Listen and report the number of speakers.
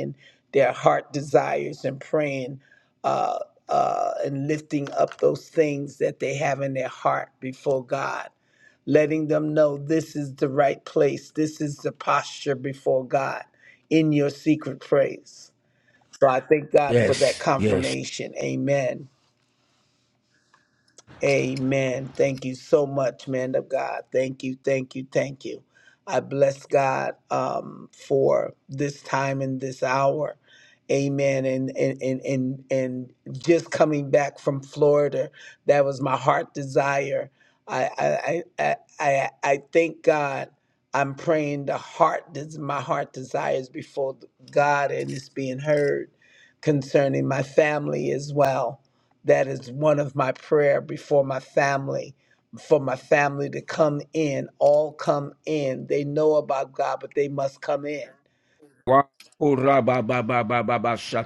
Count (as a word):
two